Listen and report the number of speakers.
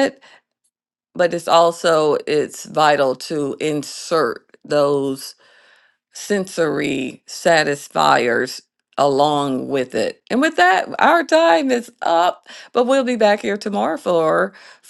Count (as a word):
one